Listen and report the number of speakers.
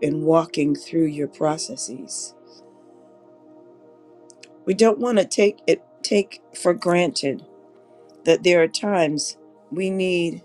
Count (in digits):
1